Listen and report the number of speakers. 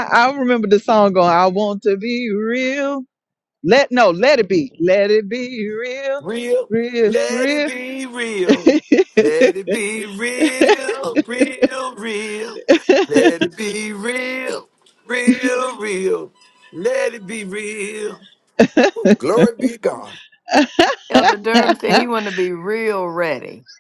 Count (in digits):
3